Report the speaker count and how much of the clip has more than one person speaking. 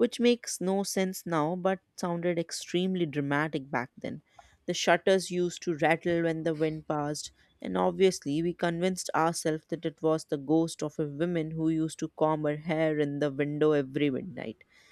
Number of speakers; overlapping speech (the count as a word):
one, no overlap